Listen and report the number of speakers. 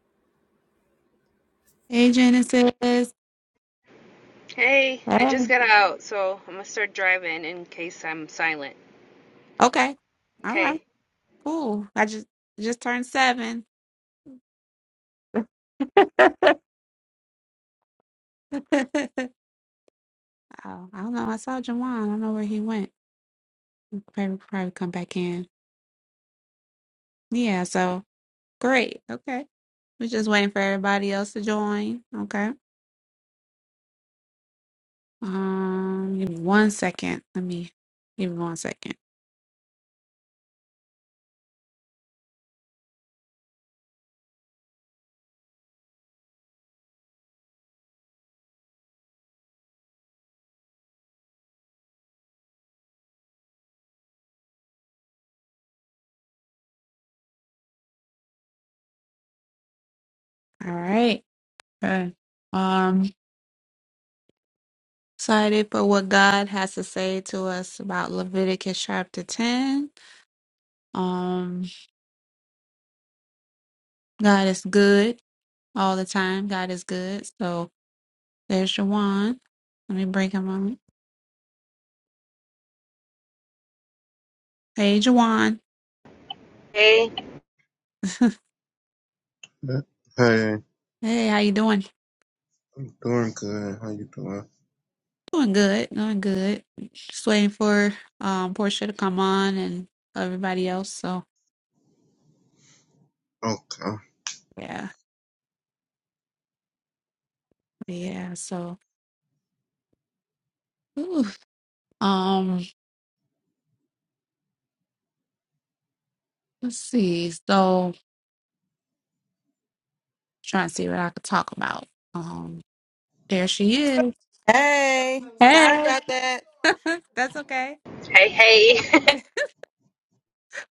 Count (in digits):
4